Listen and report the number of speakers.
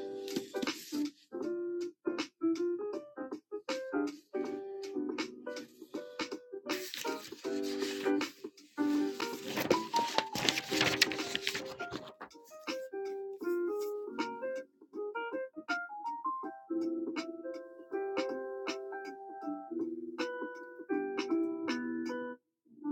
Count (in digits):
0